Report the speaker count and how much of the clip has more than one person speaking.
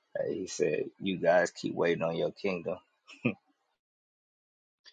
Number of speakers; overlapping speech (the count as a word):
one, no overlap